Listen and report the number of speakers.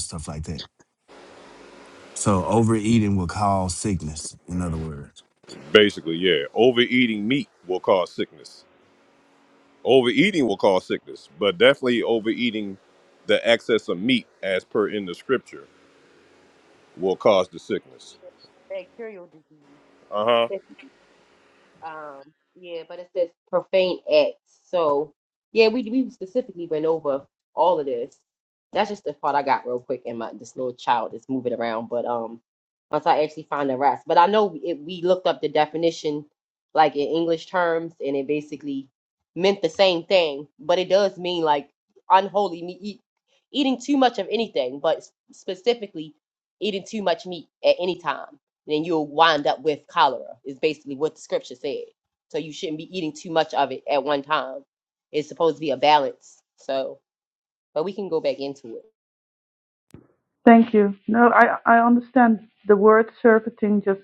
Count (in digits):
4